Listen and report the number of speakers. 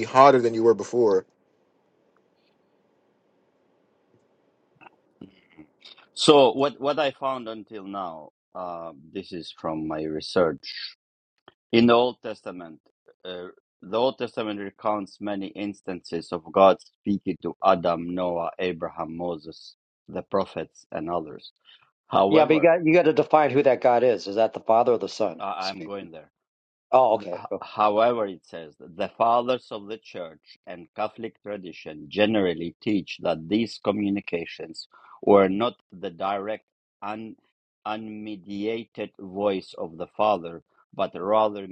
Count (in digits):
3